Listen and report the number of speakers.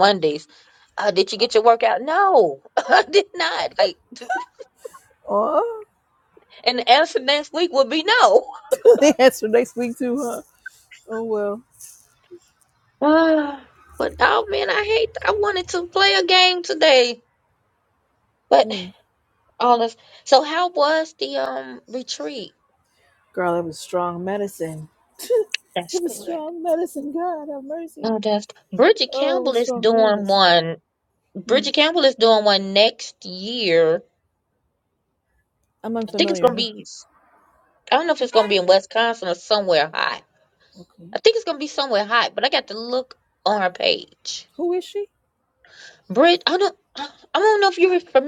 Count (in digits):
2